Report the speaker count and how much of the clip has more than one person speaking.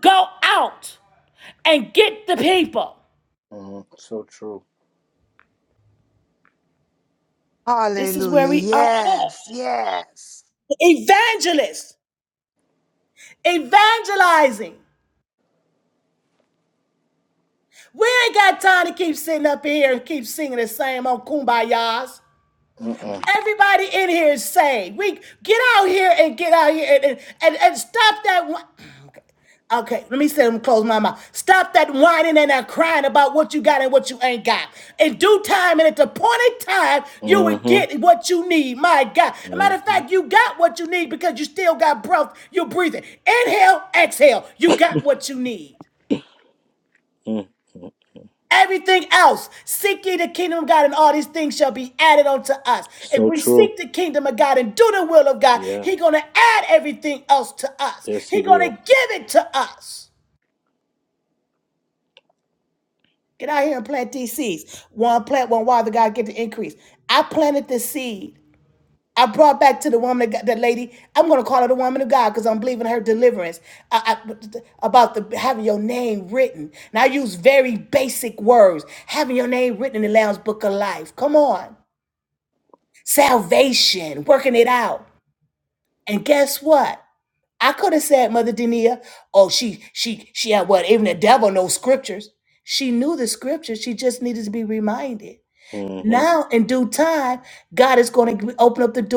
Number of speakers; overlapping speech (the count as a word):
three, about 4%